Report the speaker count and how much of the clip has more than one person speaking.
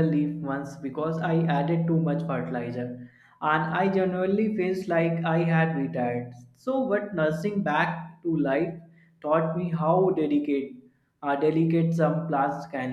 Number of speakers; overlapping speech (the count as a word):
one, no overlap